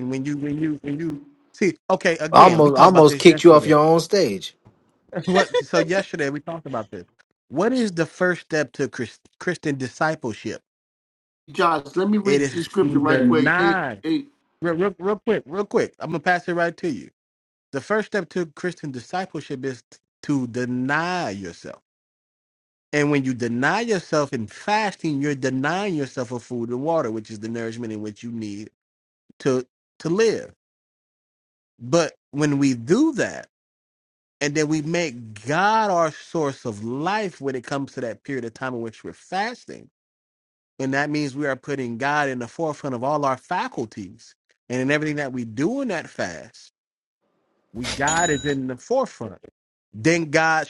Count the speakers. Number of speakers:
three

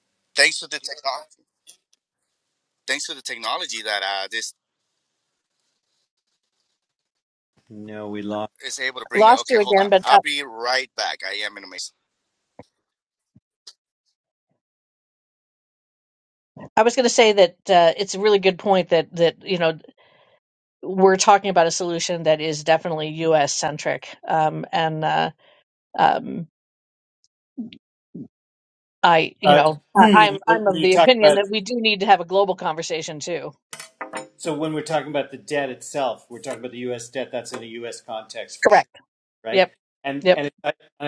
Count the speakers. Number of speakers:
three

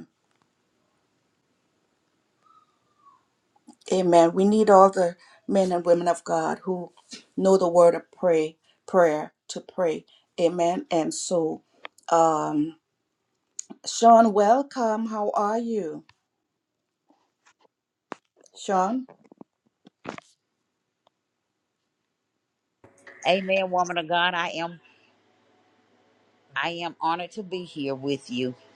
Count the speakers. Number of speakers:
two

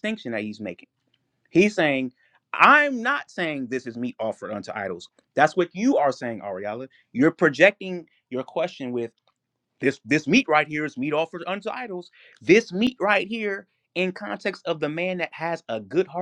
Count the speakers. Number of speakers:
one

